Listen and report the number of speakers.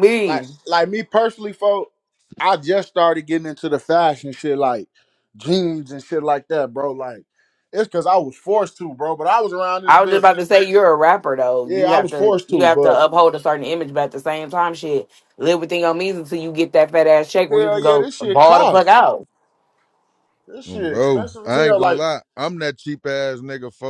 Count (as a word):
three